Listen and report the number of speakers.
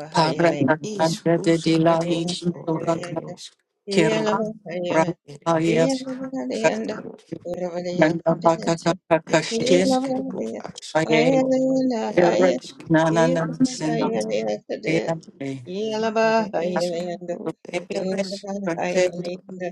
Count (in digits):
3